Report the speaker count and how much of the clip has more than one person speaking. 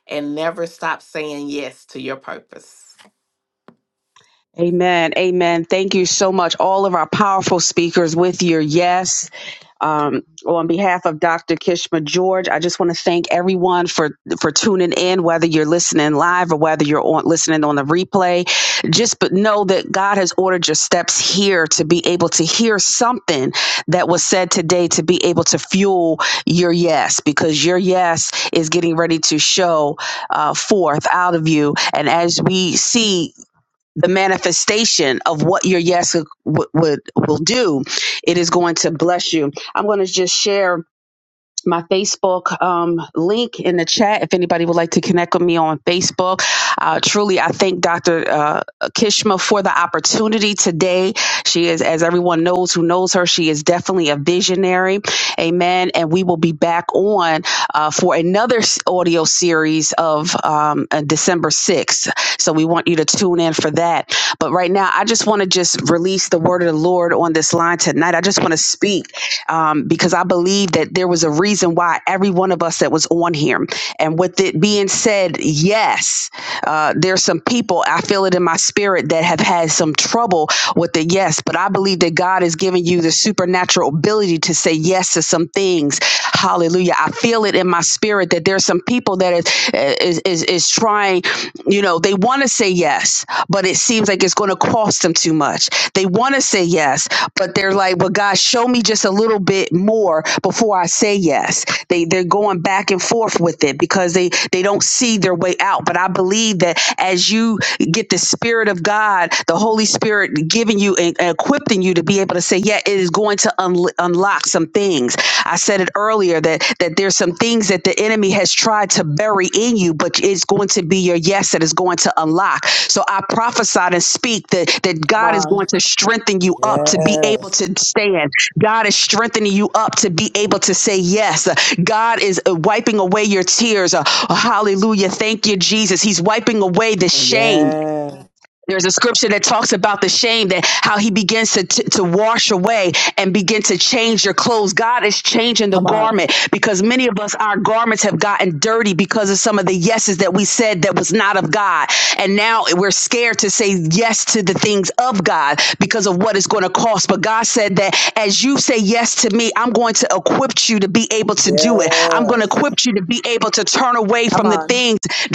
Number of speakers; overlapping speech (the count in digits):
3, about 2%